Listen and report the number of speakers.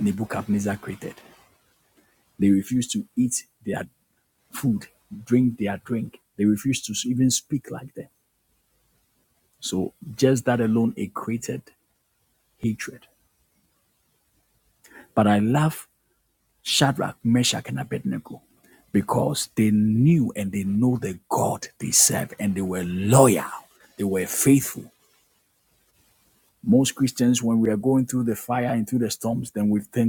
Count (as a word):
one